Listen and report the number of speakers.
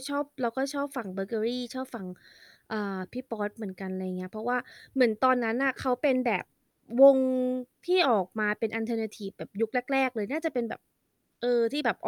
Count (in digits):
1